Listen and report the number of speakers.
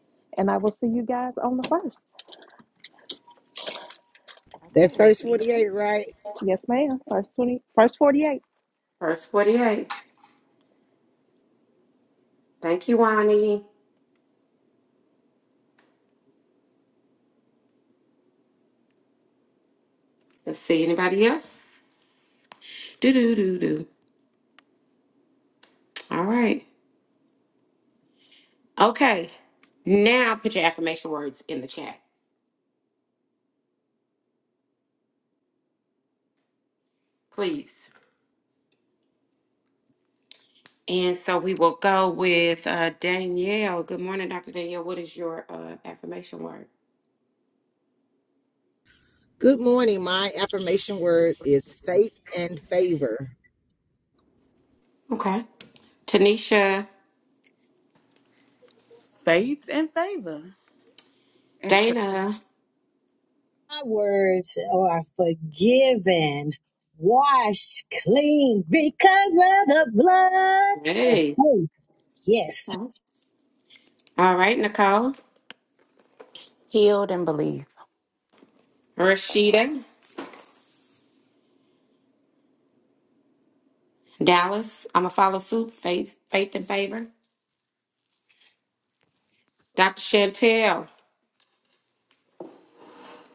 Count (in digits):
6